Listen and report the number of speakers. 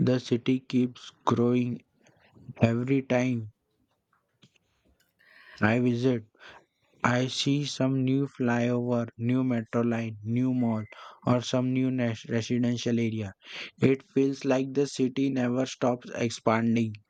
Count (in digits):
1